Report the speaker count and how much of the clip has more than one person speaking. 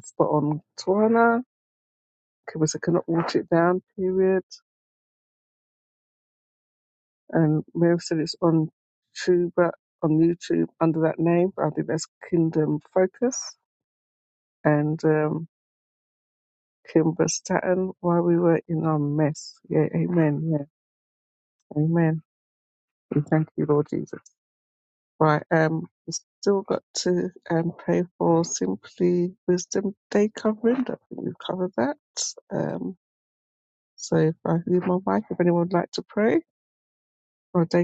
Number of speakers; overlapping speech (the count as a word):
one, no overlap